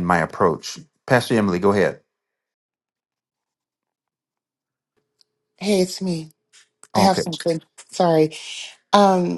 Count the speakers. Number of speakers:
2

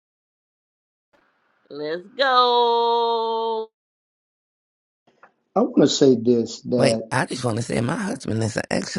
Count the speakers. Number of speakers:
3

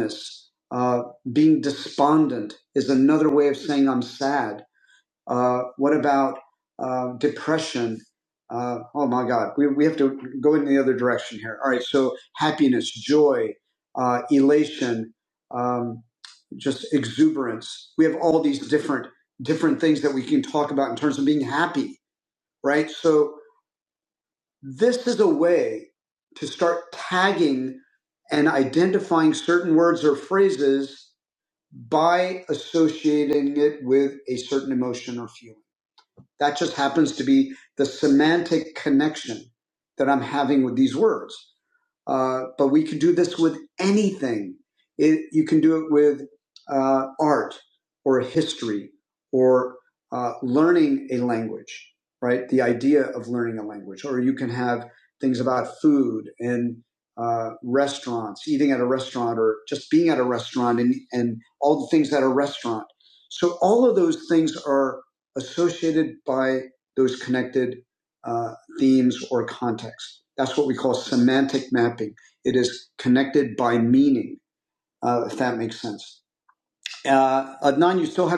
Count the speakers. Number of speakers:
1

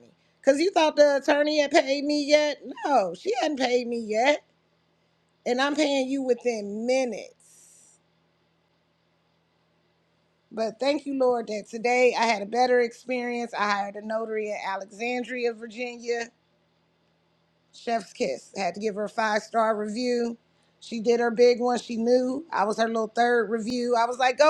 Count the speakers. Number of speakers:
1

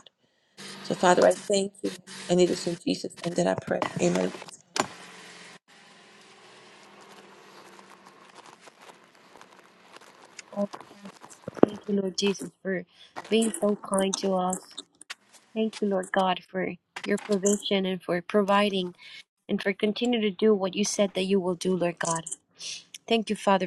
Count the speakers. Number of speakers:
2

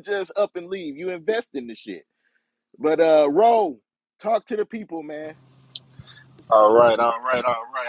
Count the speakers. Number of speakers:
2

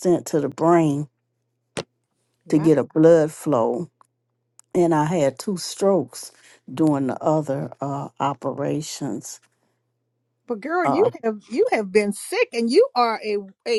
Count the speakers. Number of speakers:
2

